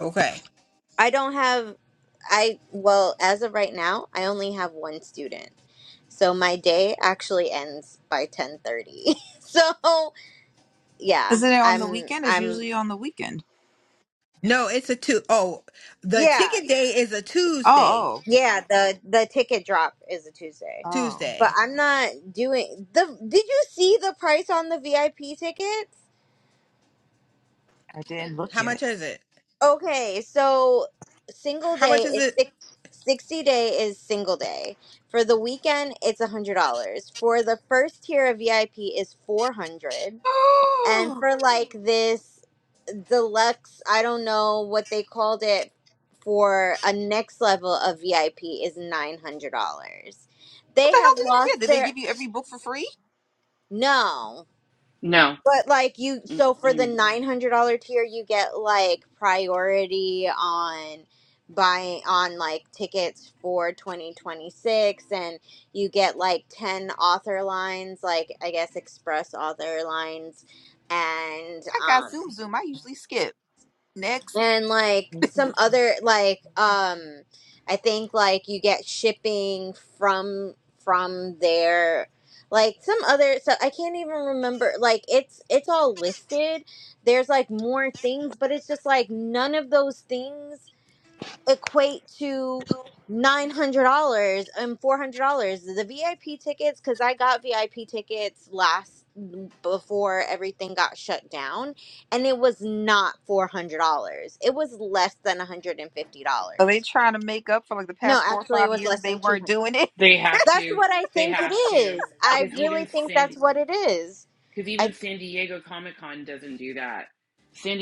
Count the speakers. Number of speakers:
four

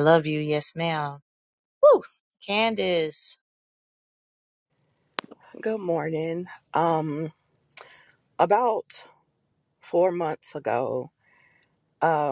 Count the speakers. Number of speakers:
two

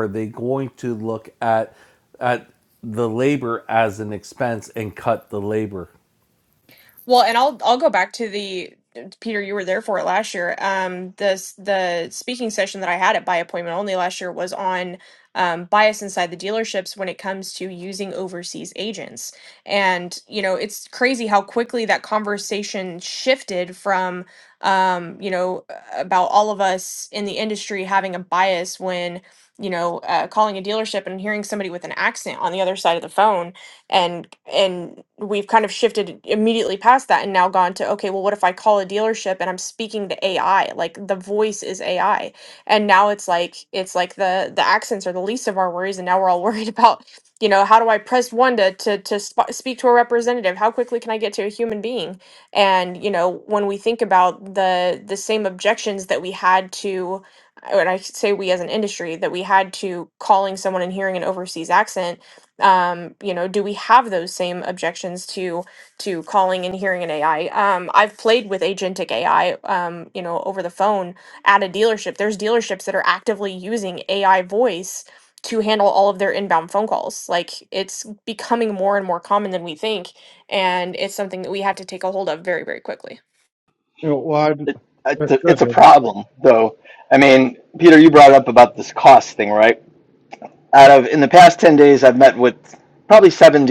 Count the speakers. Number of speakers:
four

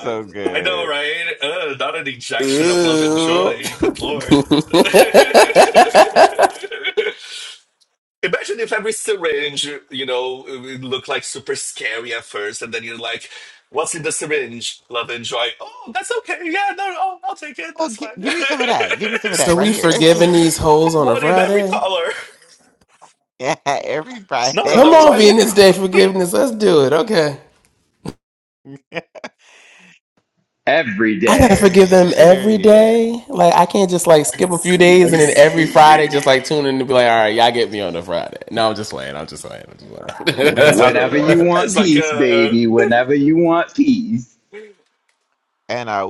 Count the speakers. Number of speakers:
four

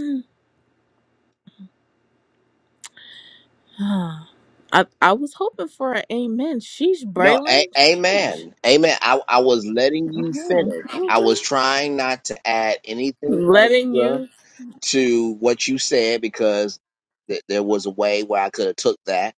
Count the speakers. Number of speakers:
two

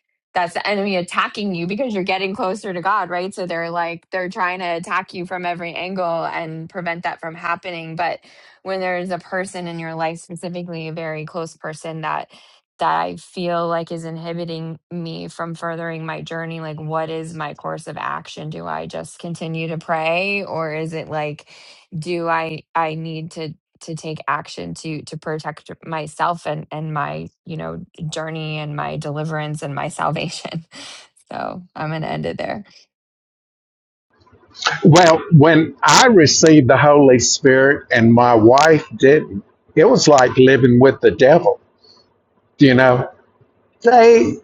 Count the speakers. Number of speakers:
two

